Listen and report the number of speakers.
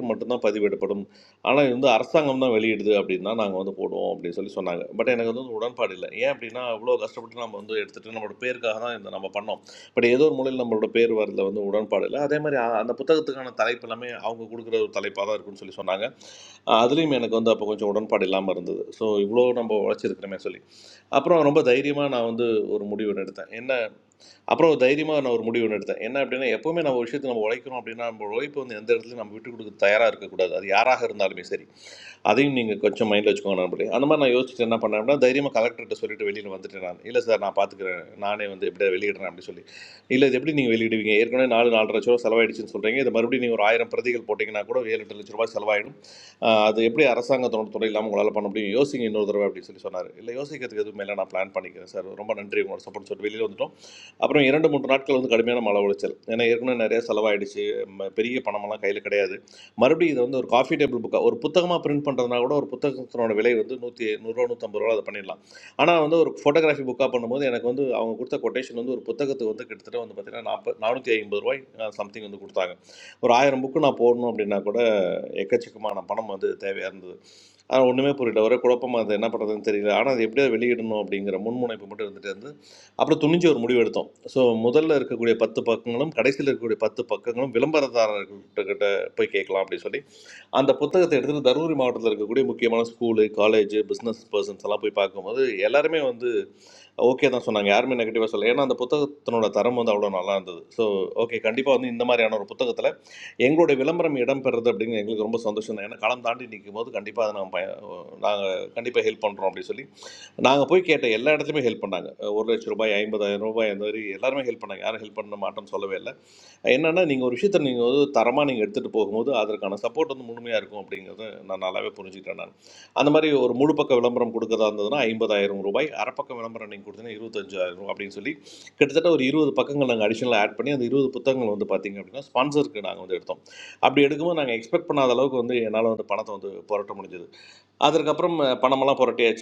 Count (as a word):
one